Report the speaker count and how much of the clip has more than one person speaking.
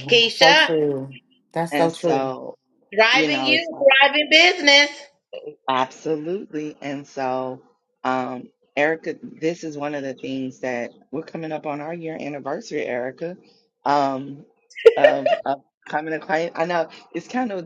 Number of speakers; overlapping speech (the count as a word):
three, about 11%